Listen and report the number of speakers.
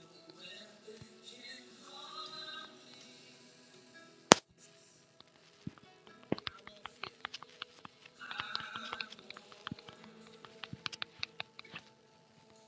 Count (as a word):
zero